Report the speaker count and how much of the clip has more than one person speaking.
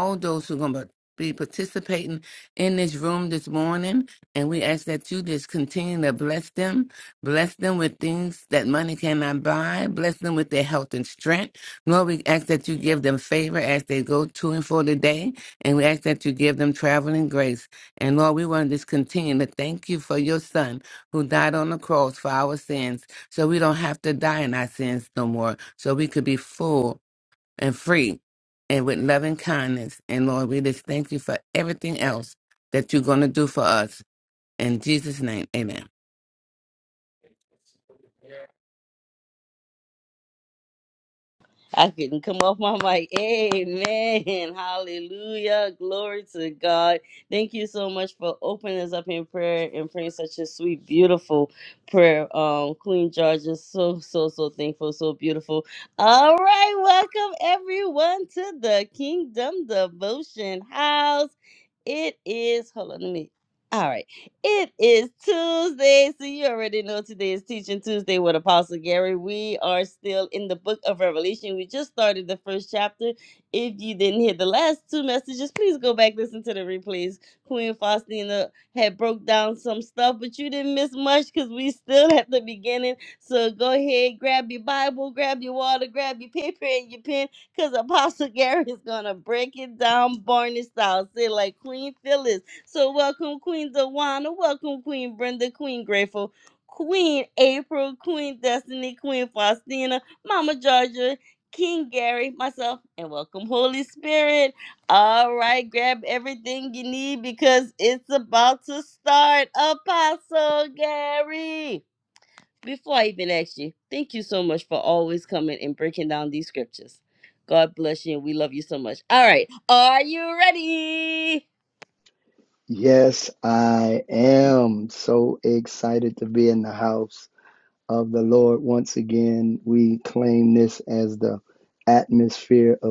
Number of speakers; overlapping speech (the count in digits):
3, no overlap